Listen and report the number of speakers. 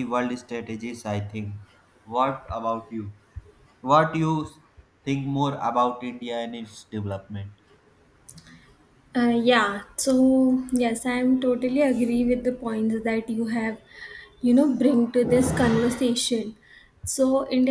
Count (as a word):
two